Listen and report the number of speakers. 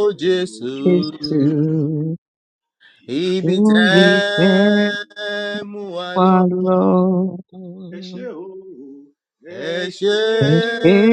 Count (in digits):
3